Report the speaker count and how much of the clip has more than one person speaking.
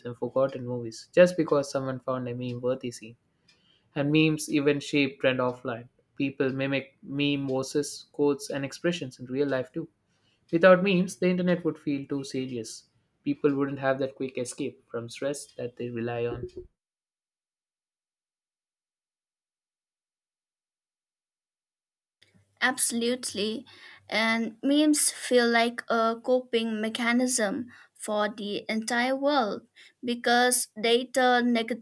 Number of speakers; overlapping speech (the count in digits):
2, no overlap